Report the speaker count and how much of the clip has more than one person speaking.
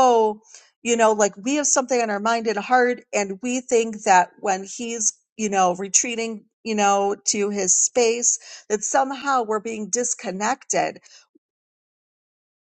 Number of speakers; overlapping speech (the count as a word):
one, no overlap